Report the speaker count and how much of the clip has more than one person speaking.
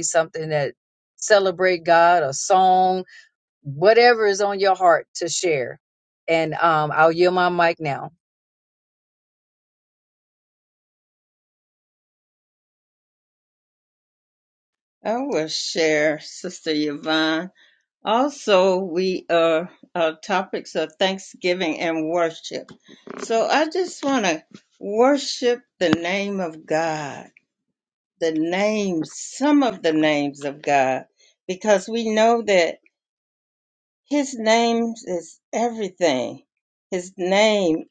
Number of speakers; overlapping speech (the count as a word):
two, no overlap